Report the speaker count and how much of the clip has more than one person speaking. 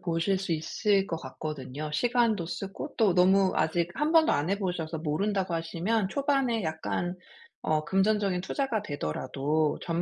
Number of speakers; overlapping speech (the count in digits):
1, no overlap